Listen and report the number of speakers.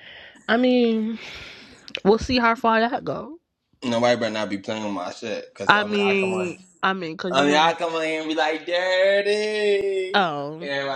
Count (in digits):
2